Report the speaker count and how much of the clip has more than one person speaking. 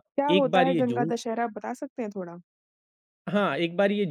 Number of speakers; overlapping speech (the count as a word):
two, about 23%